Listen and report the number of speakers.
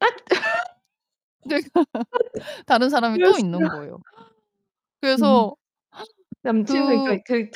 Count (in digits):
2